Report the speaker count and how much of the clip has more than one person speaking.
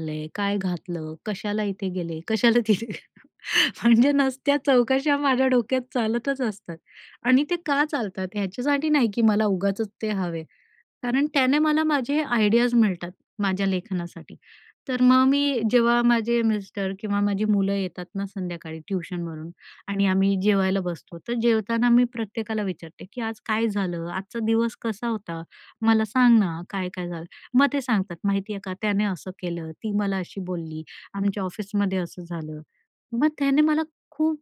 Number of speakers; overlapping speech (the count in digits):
1, no overlap